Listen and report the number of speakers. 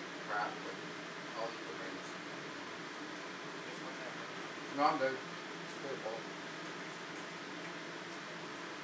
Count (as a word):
one